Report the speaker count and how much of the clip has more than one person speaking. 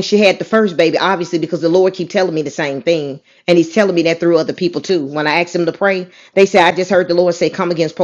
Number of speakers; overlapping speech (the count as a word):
one, no overlap